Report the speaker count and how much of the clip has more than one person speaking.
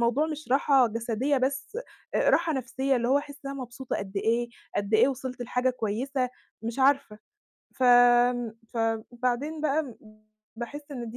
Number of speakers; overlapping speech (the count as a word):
one, no overlap